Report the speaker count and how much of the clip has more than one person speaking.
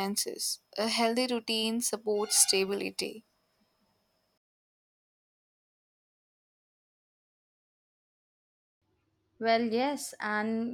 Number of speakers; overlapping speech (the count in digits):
2, no overlap